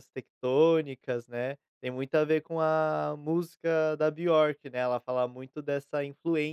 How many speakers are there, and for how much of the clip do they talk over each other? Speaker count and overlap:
1, no overlap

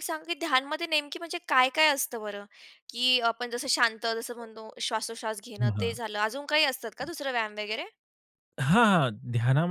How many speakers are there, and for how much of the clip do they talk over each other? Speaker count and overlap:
2, about 2%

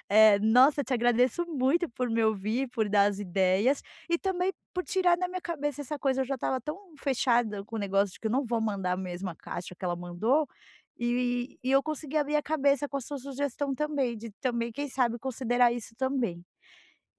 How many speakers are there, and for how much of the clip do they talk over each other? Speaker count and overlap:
1, no overlap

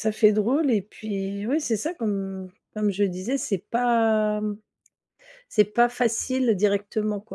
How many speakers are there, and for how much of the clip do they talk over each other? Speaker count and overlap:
1, no overlap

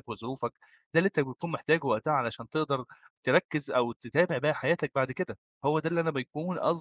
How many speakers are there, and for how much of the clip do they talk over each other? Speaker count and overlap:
1, no overlap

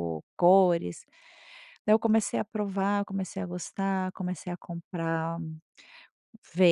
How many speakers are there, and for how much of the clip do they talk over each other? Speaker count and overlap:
1, no overlap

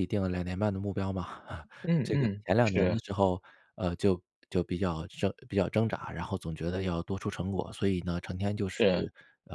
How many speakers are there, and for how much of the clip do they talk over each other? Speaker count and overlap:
2, about 10%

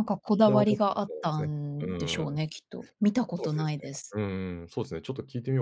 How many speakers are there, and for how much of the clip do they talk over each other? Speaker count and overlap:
2, about 27%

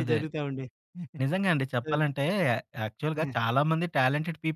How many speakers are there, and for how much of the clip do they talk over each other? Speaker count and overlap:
2, about 13%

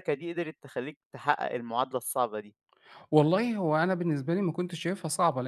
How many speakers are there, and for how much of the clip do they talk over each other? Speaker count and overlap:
2, no overlap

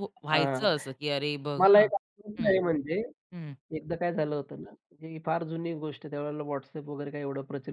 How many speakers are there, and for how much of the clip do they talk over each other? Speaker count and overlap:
2, about 12%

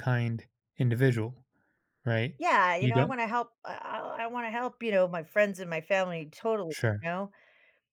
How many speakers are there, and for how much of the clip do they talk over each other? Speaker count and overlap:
2, about 7%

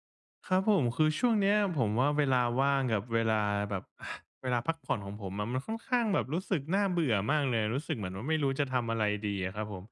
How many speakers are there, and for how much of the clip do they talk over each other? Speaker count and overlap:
1, no overlap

